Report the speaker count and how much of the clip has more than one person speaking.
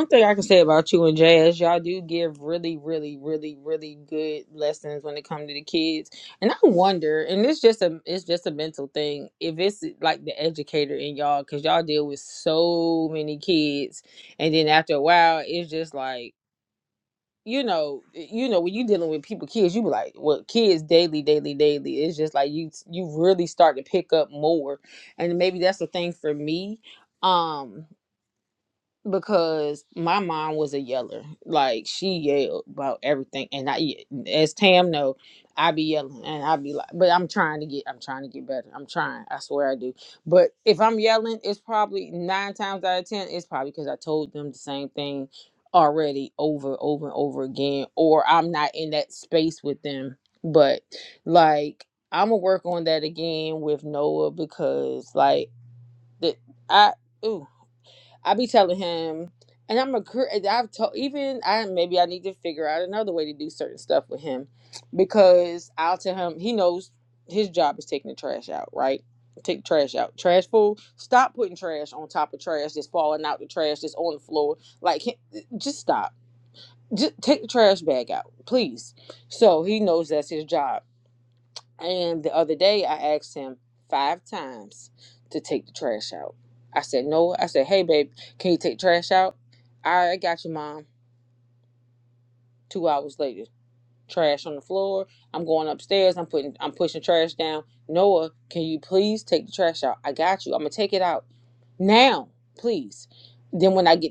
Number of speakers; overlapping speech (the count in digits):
1, no overlap